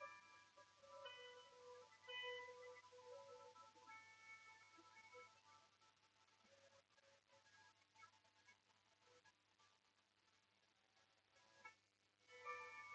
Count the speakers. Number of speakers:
0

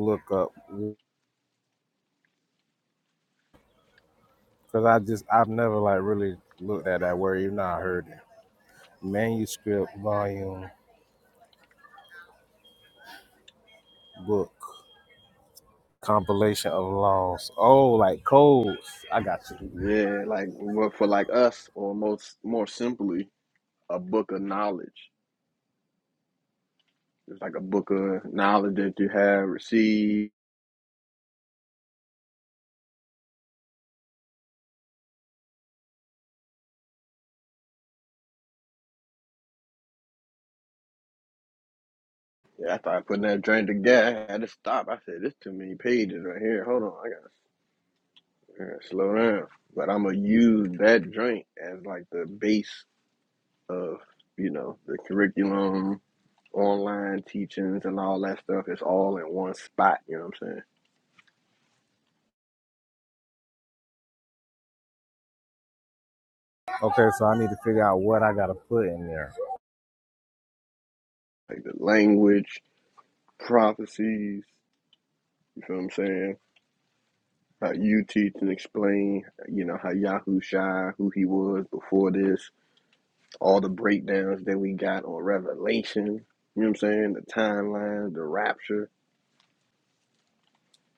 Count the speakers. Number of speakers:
2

